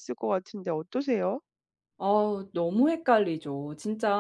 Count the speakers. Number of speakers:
two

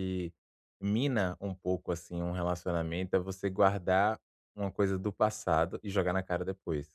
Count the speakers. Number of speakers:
one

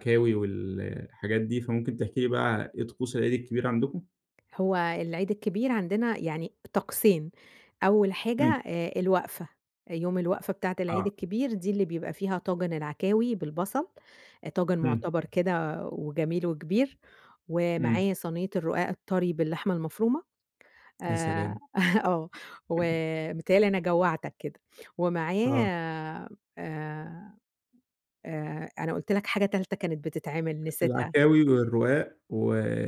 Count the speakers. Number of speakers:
two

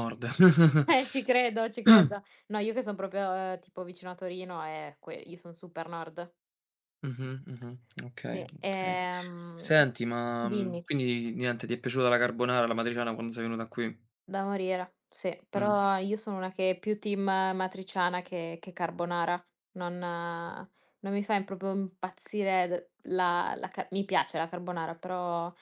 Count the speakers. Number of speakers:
two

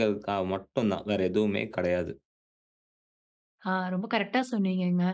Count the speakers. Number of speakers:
two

